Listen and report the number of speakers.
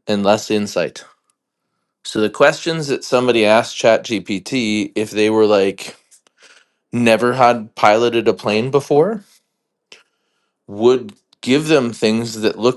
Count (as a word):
one